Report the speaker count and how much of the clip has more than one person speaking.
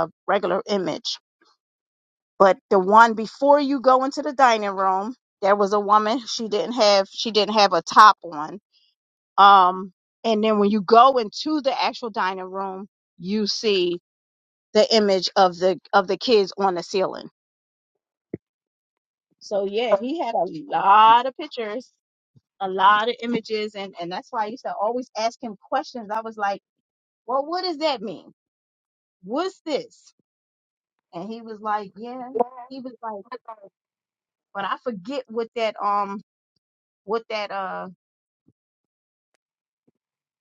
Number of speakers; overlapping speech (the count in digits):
1, no overlap